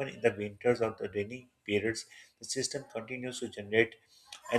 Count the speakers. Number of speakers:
1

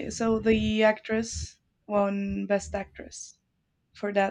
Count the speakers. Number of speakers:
1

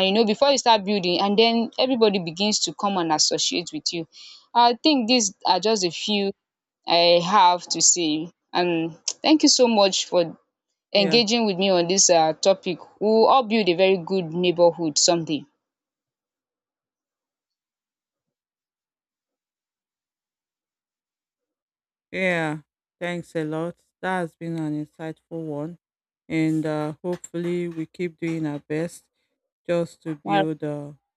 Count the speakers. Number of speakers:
2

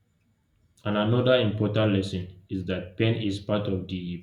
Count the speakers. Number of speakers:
1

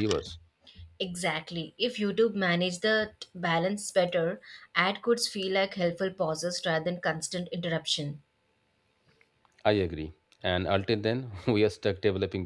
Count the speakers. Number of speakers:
2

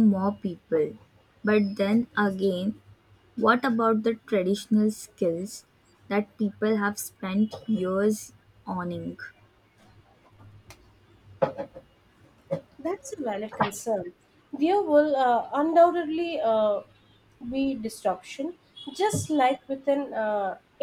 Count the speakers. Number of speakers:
2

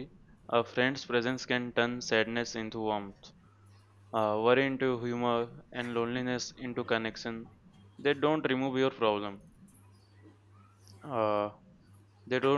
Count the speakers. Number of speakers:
1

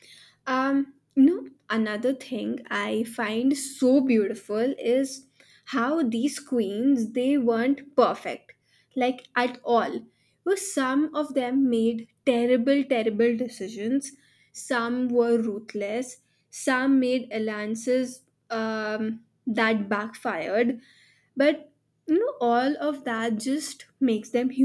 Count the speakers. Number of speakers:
1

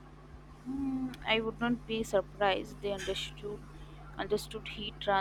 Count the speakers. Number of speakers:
1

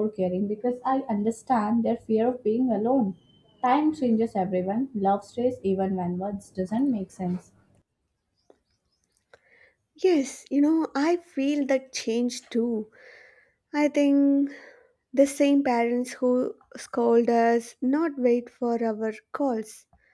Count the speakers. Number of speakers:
2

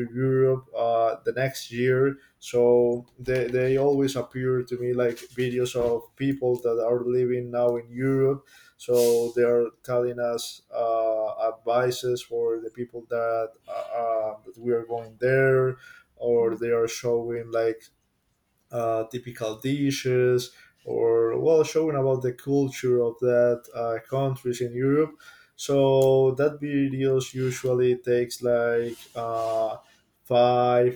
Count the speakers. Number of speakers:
1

